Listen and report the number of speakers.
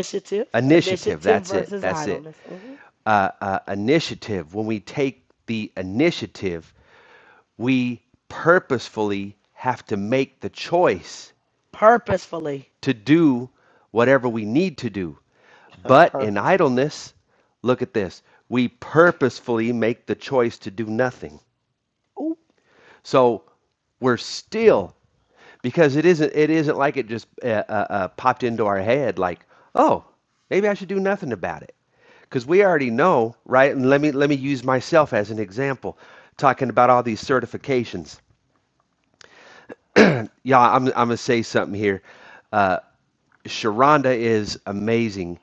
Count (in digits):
2